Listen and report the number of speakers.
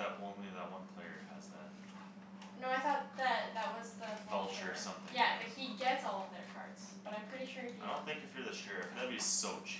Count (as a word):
two